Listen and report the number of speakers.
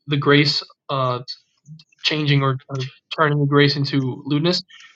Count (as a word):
one